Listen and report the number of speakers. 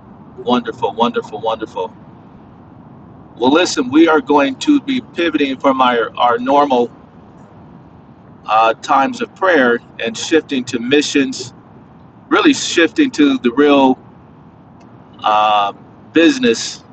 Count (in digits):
1